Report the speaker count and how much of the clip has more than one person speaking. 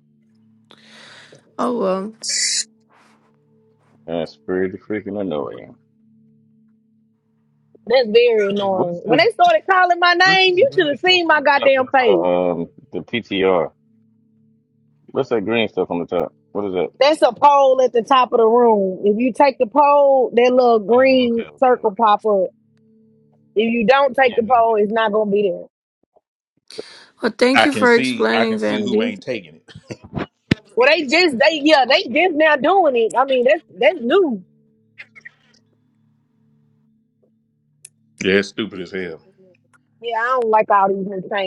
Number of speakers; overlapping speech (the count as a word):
four, about 13%